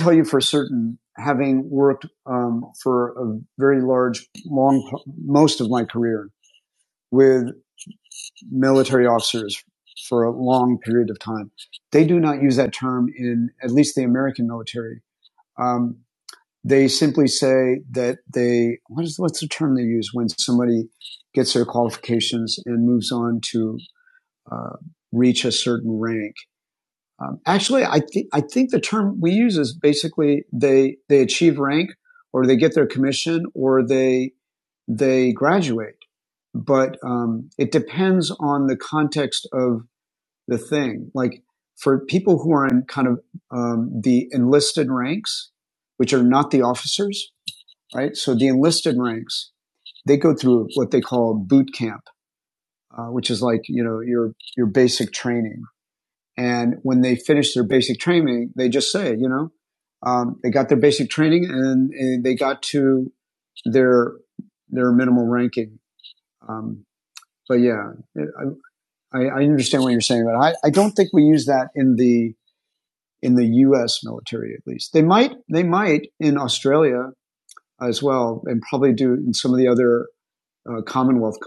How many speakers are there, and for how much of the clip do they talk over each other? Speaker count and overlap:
1, no overlap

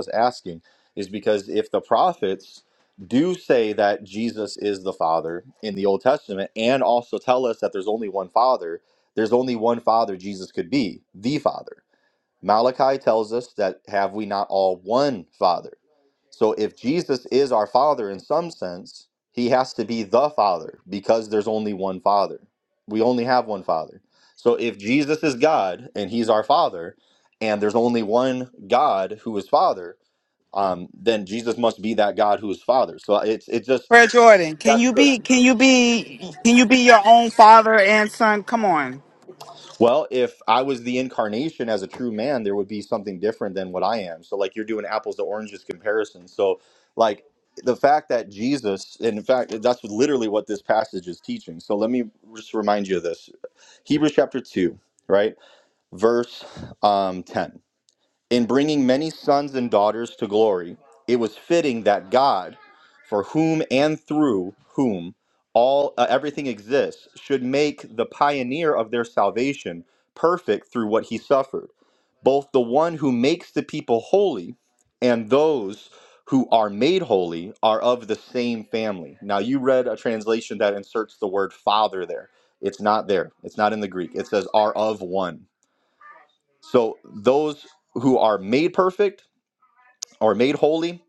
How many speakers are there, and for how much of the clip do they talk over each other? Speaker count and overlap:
2, under 1%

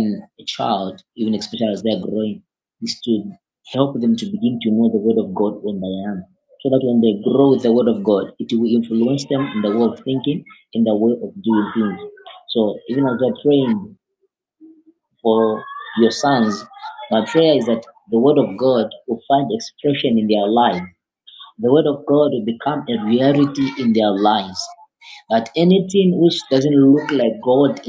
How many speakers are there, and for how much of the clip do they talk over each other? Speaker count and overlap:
1, no overlap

